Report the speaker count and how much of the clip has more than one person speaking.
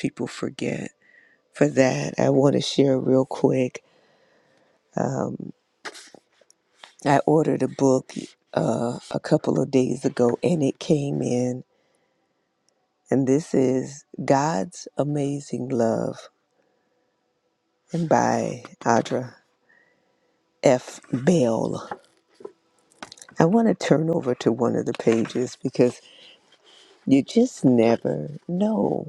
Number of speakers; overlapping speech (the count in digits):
1, no overlap